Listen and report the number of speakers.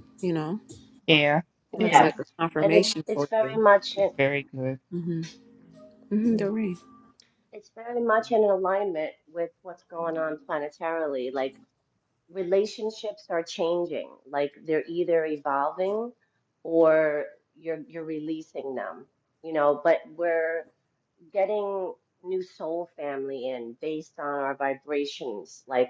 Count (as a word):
three